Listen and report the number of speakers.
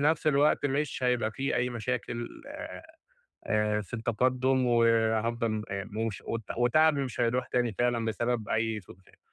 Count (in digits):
1